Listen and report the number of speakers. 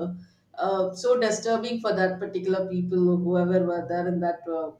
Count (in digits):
1